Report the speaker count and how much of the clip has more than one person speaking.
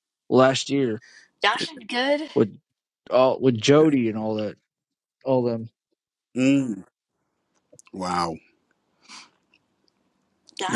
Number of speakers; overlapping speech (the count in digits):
3, about 1%